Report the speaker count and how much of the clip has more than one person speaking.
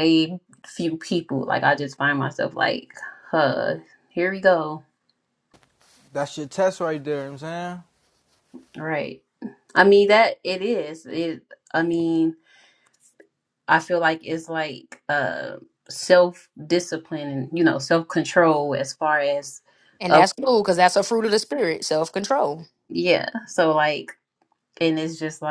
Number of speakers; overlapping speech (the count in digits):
3, about 1%